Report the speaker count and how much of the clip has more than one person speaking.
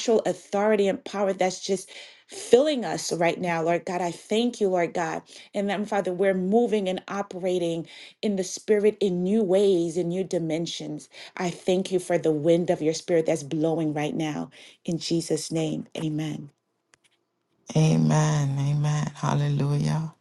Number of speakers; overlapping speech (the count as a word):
two, no overlap